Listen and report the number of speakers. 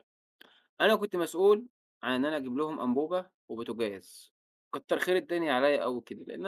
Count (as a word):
one